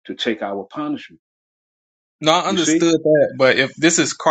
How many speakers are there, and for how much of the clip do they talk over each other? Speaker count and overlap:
two, about 8%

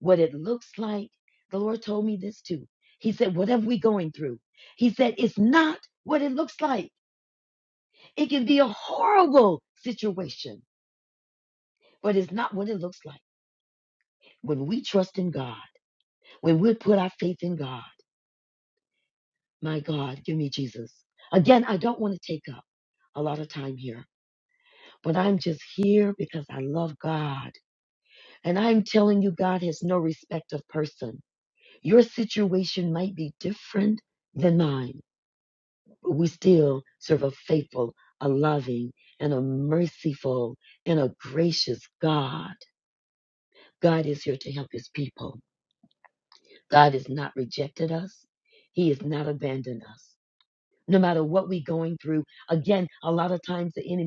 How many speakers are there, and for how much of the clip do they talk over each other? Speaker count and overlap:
one, no overlap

